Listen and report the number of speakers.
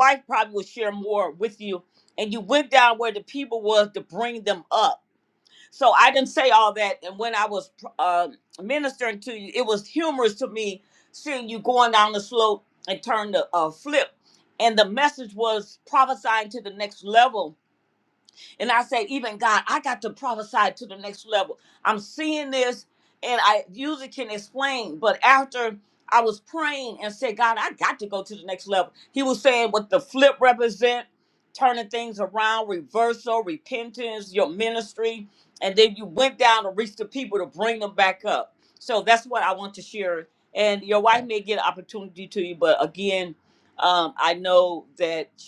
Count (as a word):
one